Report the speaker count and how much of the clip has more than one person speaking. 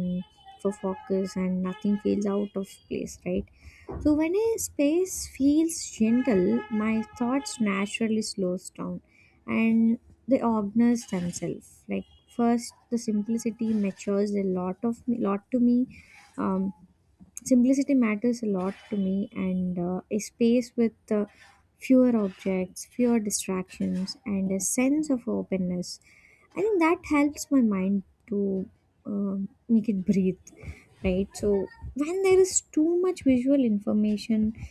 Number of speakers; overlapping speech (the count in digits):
1, no overlap